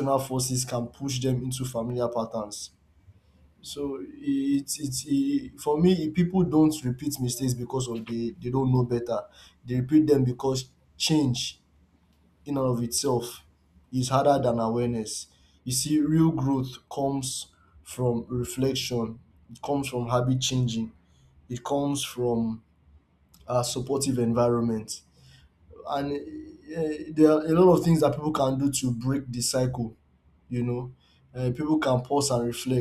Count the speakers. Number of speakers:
one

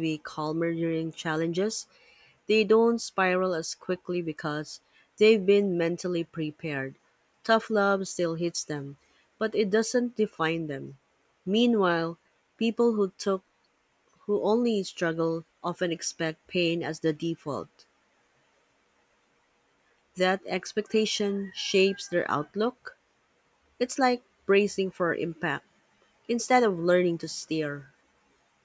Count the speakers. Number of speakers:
one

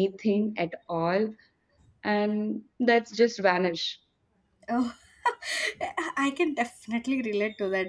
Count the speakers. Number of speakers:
two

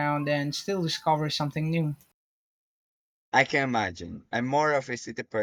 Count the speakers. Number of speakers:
two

